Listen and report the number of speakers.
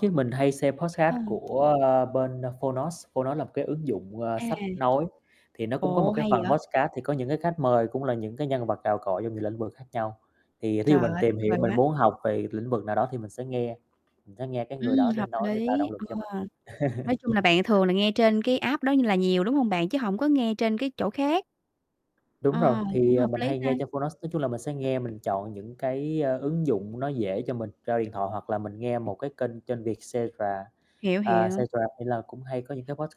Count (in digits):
2